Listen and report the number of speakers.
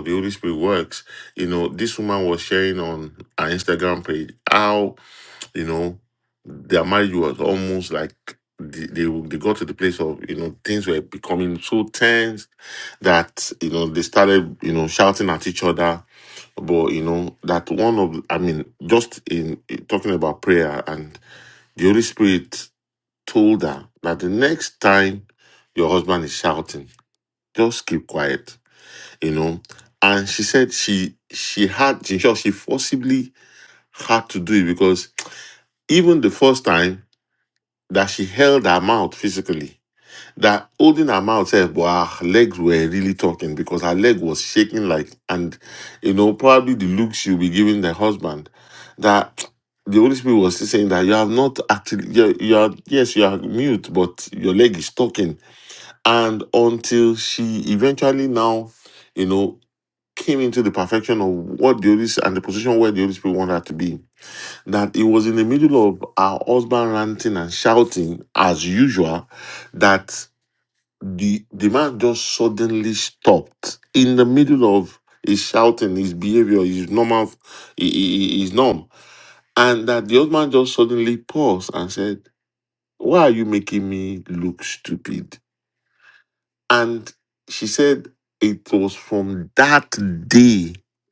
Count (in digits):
1